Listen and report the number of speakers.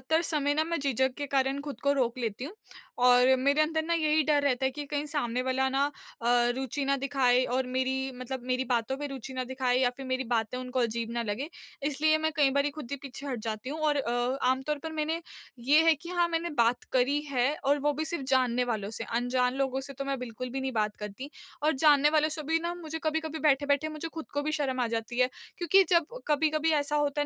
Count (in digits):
1